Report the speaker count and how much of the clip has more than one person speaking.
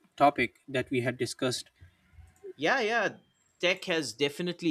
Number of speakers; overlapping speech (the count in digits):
2, no overlap